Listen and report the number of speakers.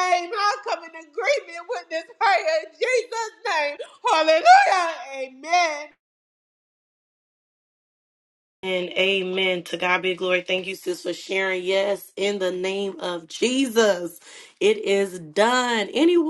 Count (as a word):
two